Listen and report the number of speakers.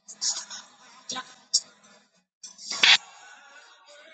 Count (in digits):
0